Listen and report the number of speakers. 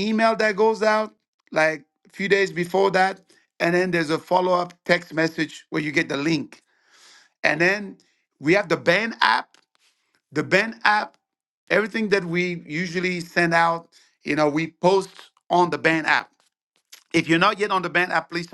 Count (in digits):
1